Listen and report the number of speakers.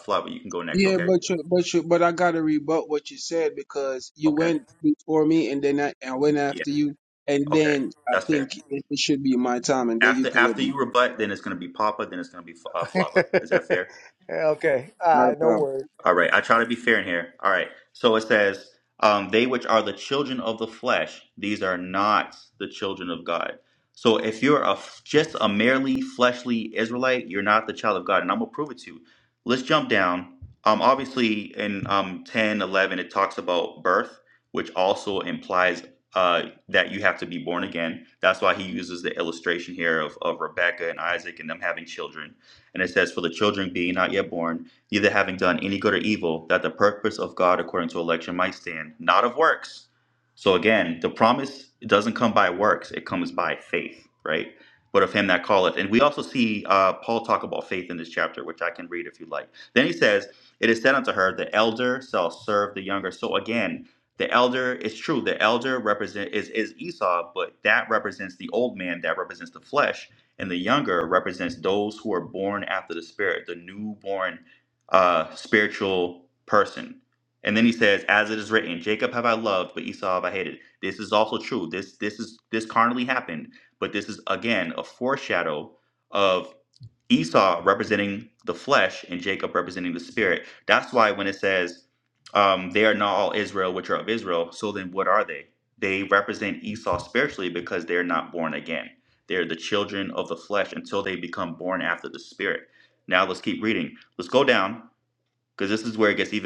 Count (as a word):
three